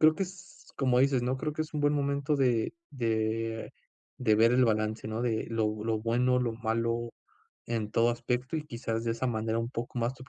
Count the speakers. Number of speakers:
1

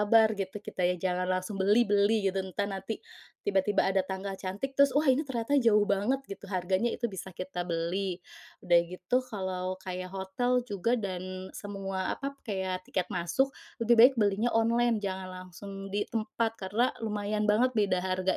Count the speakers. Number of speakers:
1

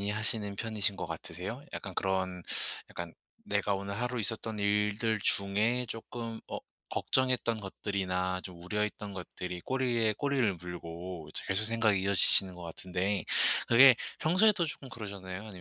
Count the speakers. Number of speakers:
1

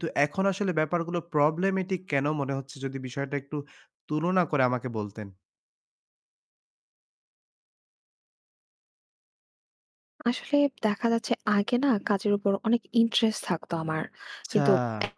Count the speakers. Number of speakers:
2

